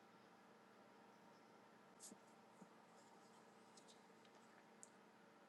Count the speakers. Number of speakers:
0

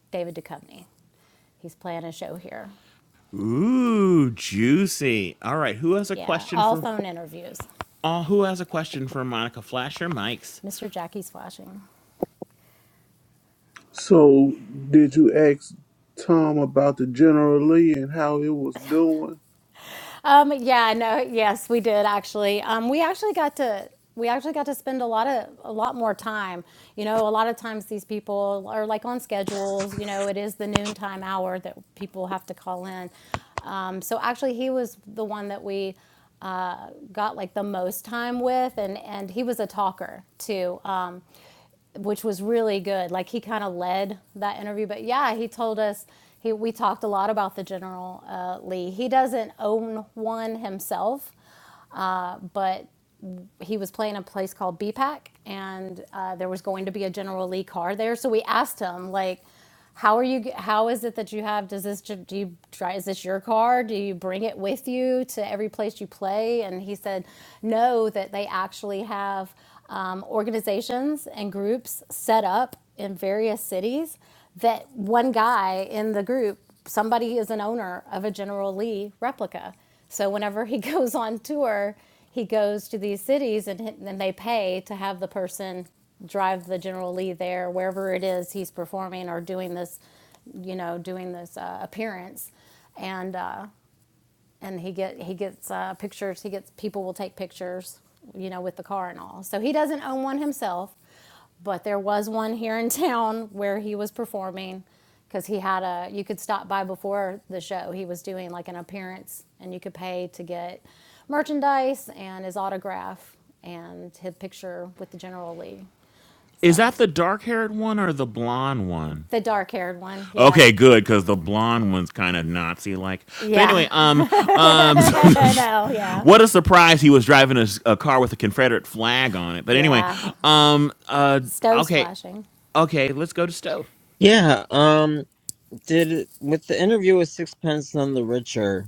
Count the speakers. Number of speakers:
4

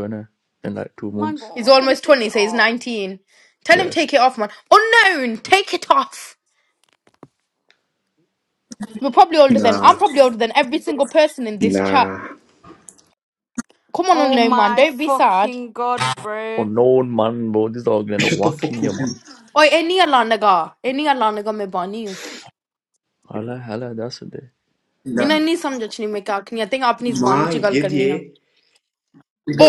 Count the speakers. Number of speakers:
4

